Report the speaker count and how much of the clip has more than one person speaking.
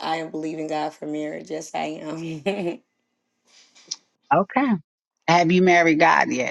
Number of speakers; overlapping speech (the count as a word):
two, no overlap